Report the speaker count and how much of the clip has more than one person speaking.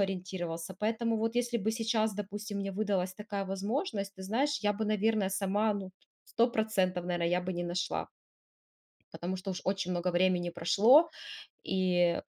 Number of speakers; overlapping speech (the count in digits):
1, no overlap